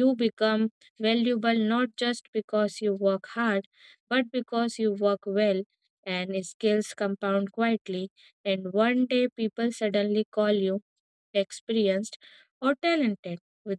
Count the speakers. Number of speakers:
1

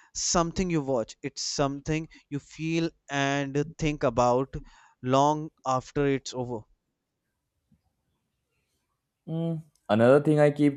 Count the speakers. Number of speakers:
2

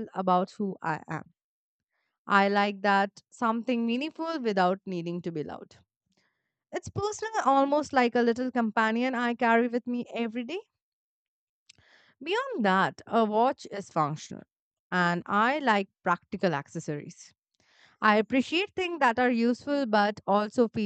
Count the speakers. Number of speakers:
1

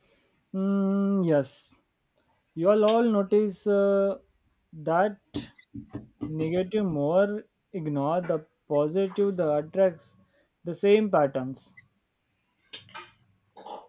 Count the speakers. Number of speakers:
1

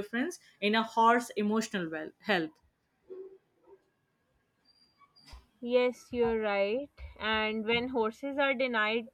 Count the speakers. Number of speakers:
2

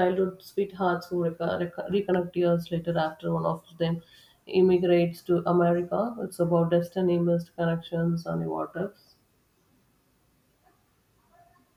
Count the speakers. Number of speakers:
1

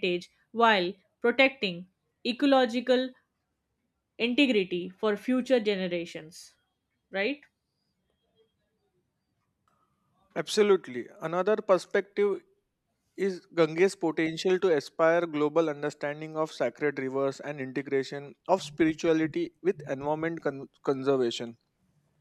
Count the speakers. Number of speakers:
2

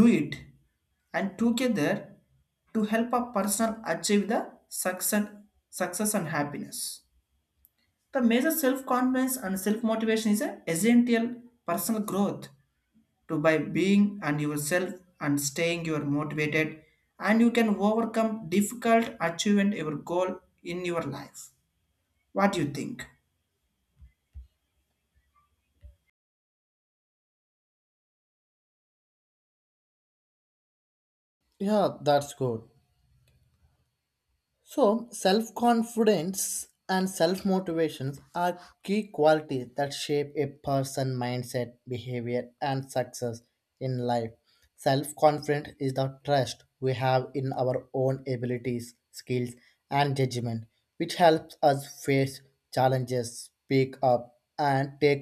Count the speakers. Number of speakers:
2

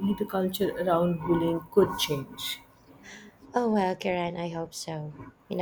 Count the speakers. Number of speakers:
2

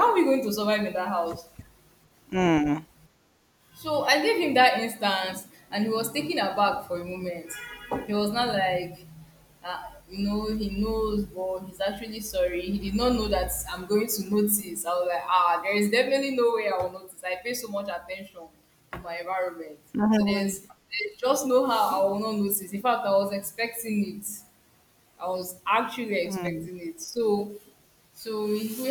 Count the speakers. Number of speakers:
2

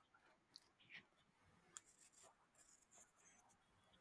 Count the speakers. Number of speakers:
0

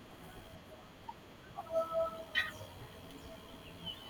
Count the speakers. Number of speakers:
0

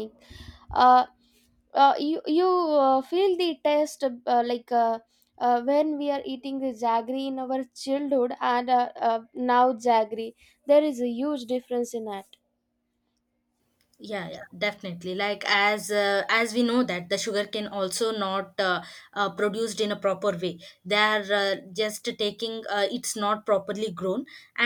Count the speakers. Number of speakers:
2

